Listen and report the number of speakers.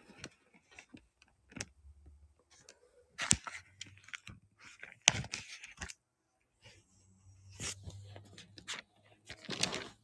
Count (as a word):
zero